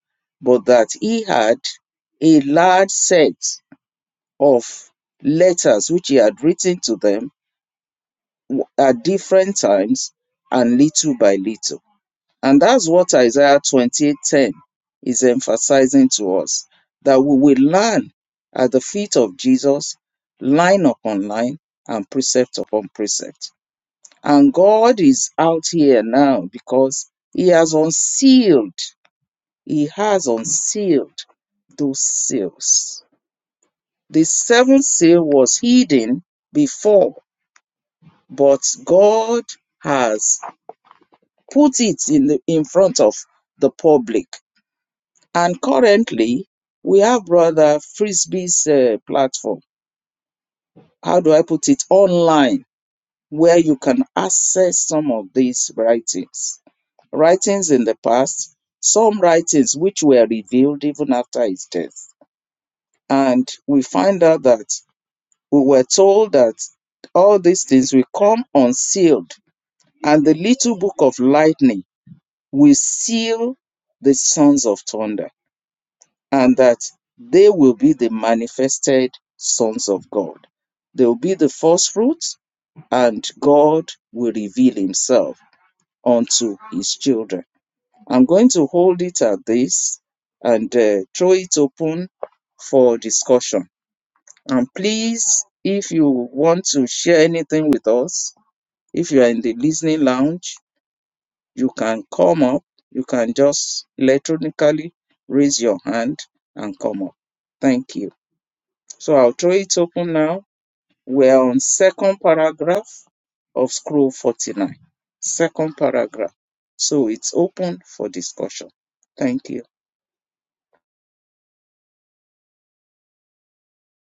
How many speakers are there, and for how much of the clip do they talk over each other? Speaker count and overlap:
1, no overlap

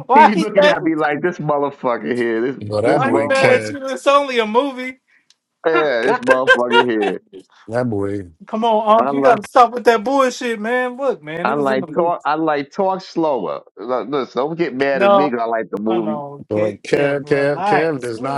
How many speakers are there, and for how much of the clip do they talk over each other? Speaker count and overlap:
3, about 29%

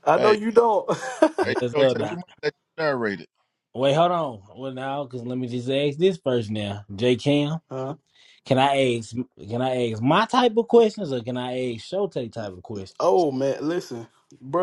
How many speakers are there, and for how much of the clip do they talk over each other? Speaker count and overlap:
3, about 6%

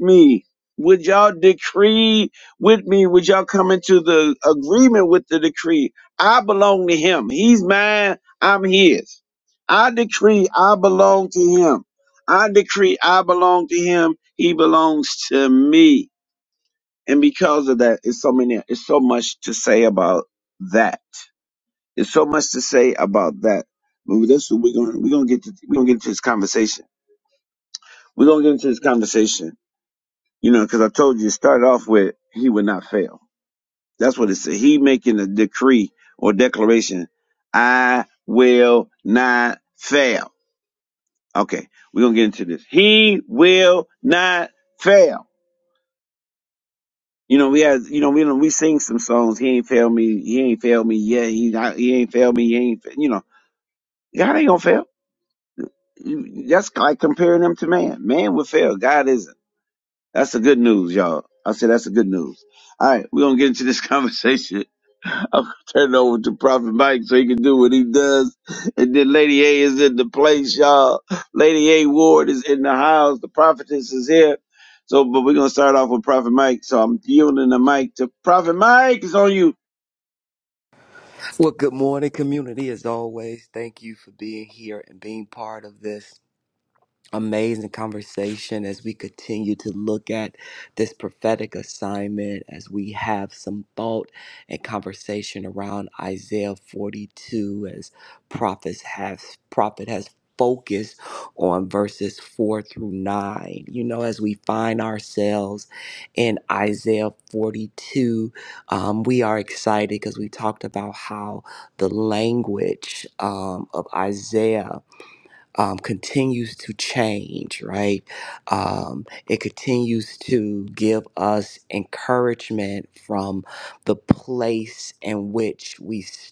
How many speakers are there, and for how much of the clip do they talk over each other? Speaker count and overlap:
2, no overlap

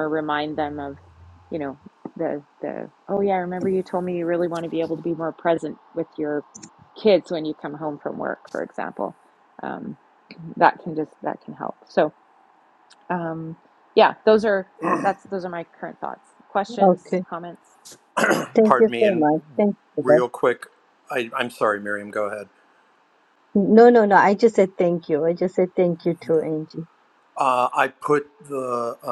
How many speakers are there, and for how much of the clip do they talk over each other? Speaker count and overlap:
3, about 4%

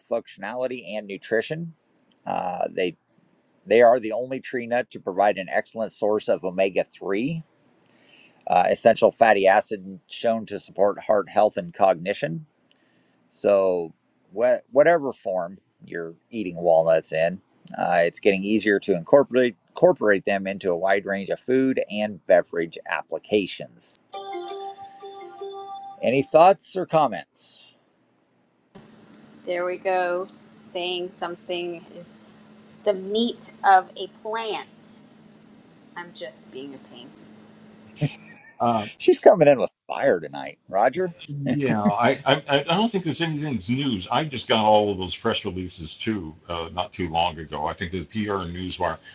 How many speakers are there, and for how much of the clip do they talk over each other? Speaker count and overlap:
3, no overlap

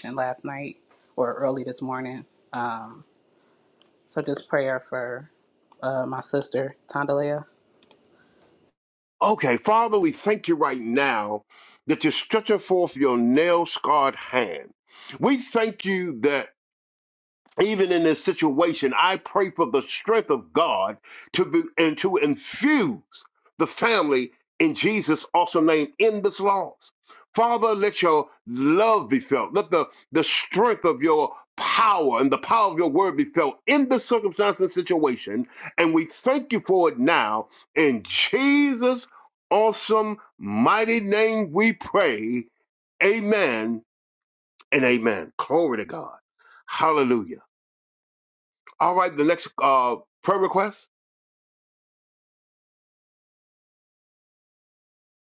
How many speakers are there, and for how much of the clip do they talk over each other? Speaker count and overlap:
2, no overlap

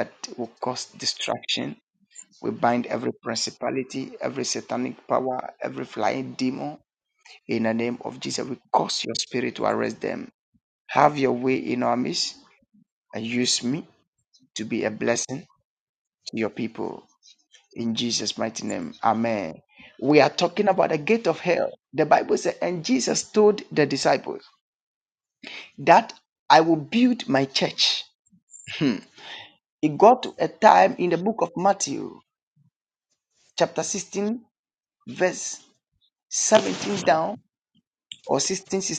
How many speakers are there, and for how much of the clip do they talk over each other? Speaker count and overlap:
1, no overlap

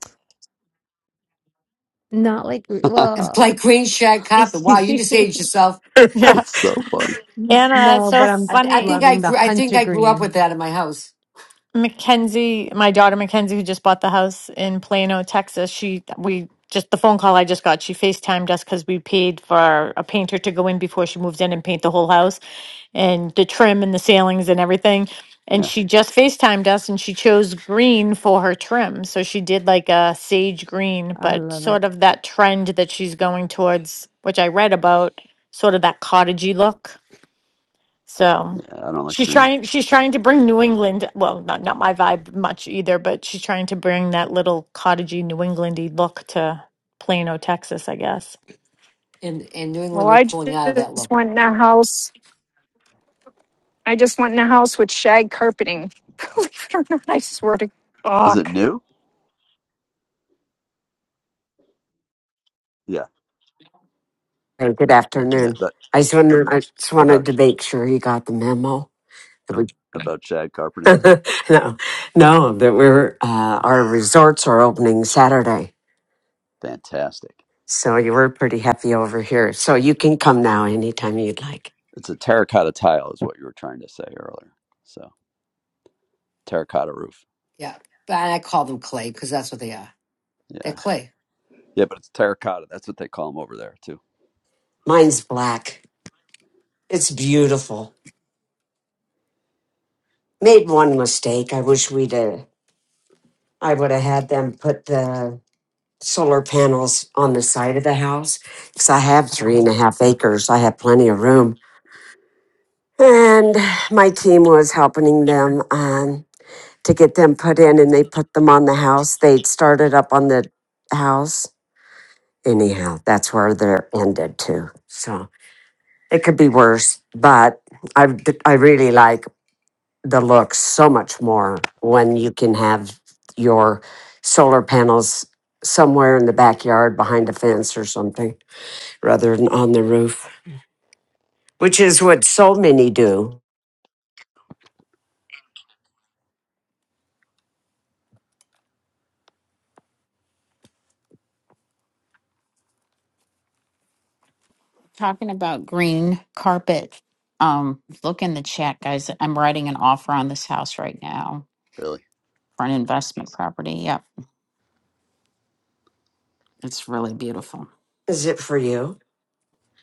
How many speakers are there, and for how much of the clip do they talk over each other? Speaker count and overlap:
7, about 3%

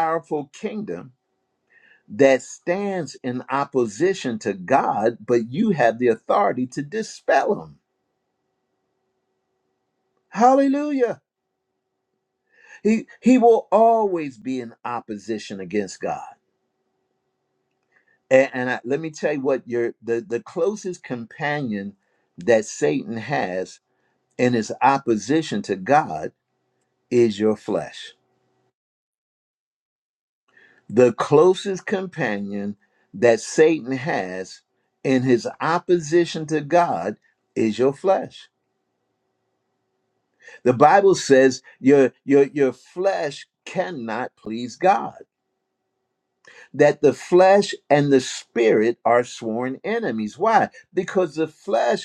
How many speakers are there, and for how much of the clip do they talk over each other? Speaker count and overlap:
1, no overlap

